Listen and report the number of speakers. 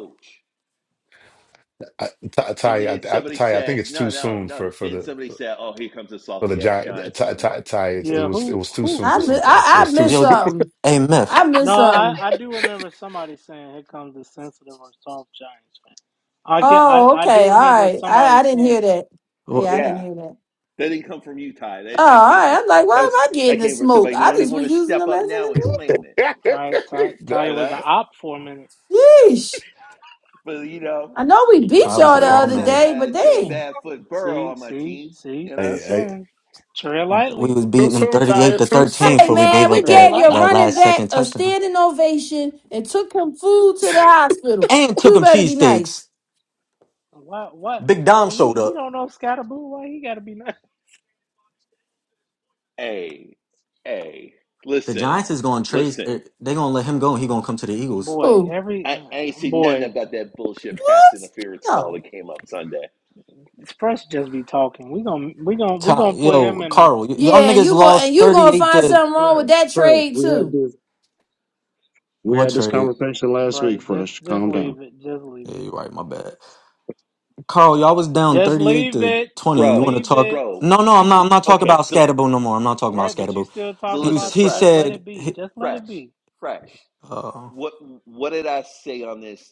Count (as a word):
six